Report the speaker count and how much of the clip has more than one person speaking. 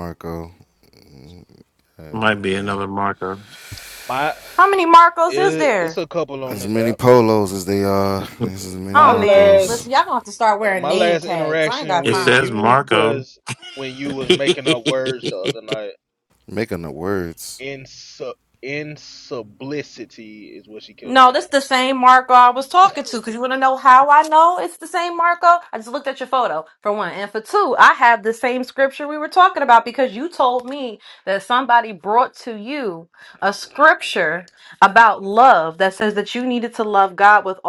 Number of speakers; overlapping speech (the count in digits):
4, about 15%